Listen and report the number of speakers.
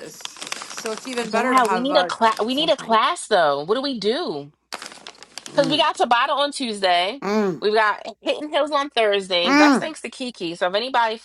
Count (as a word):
three